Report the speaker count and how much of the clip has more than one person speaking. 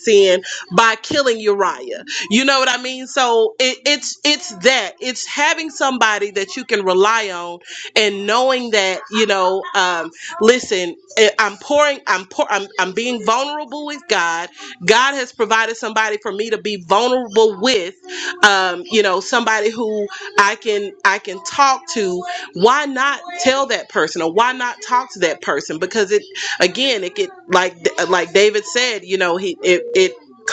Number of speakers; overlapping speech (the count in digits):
1, no overlap